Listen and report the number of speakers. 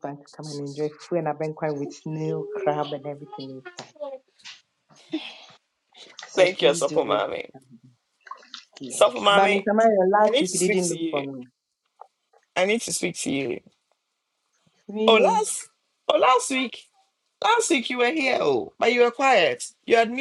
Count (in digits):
2